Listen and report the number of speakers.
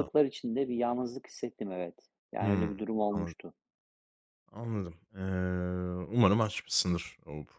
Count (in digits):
2